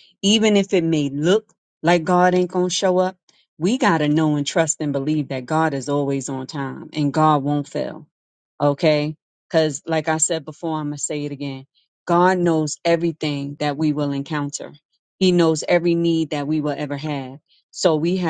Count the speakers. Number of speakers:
one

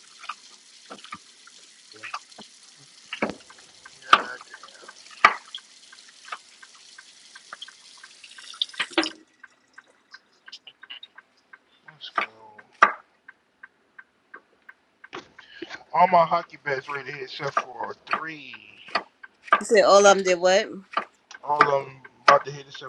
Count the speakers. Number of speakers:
two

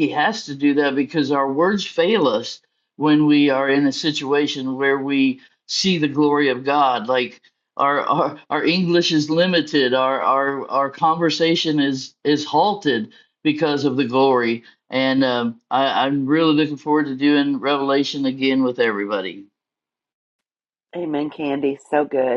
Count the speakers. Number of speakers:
two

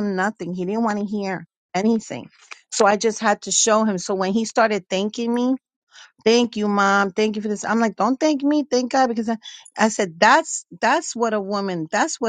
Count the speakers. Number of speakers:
one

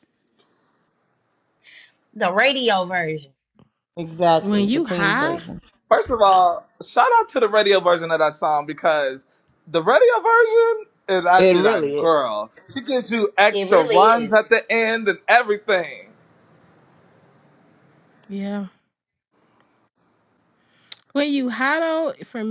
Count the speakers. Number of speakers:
four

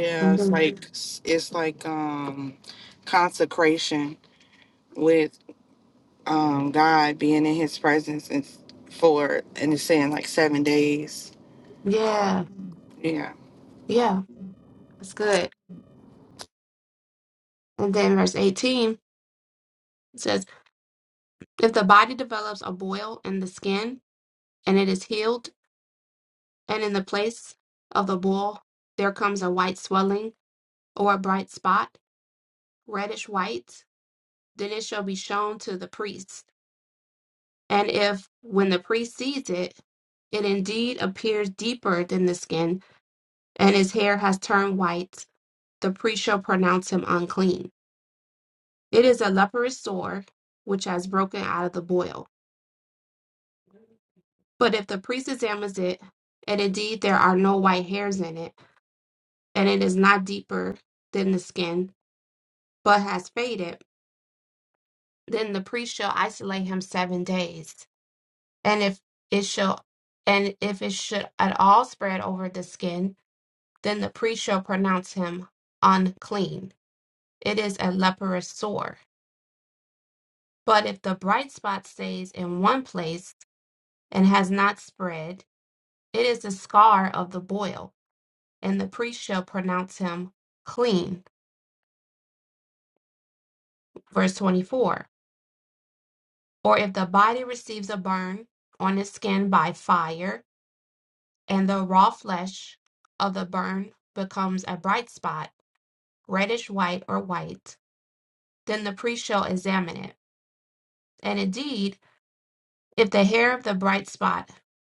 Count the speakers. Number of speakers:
two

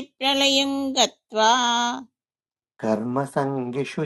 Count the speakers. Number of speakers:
two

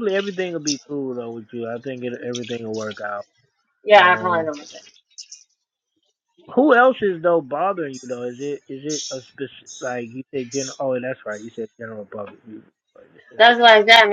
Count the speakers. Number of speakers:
two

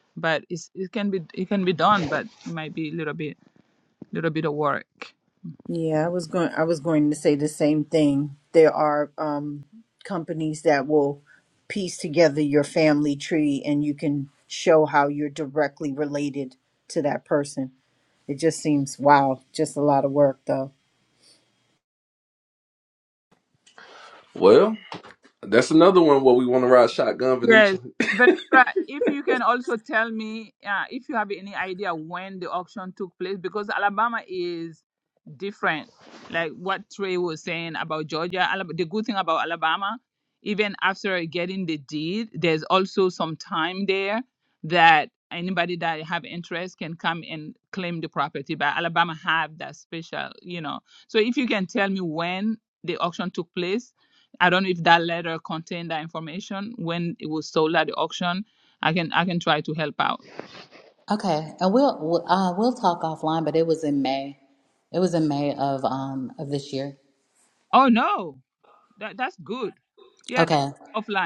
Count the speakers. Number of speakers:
four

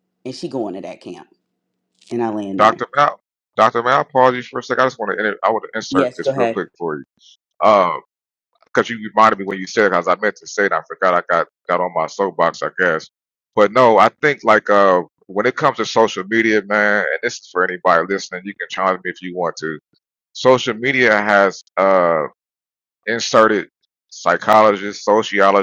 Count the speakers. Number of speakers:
two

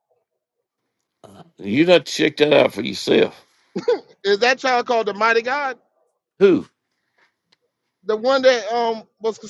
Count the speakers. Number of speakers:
two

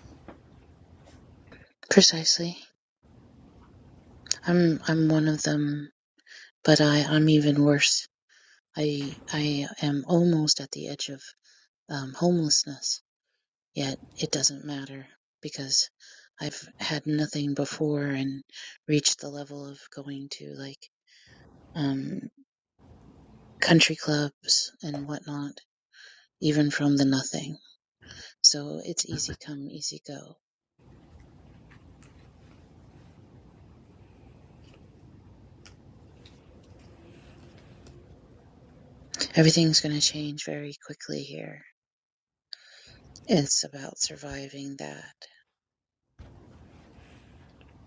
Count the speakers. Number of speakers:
one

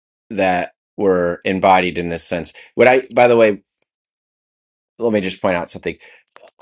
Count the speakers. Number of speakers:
one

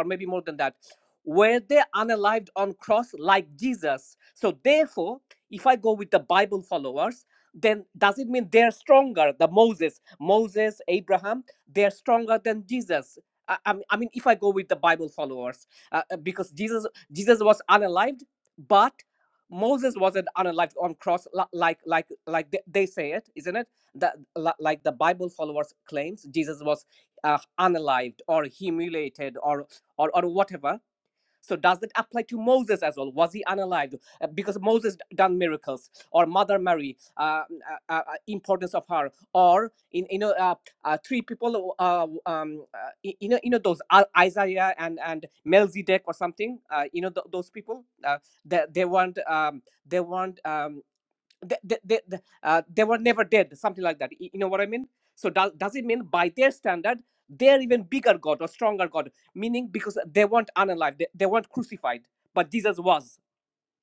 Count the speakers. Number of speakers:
one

